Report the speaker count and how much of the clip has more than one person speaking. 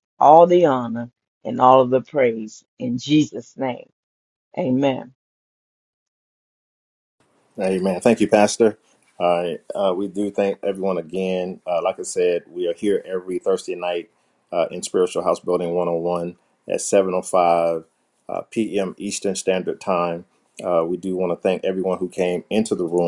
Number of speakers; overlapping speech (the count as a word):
two, no overlap